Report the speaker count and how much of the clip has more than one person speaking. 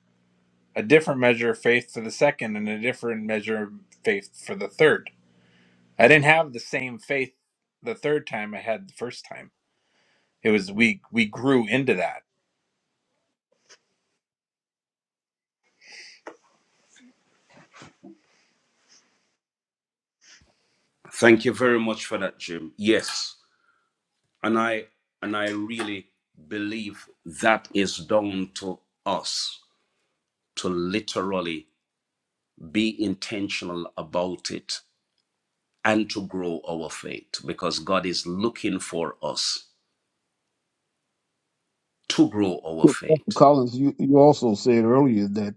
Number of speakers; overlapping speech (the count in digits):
3, about 1%